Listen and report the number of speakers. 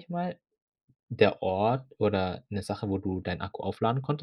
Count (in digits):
1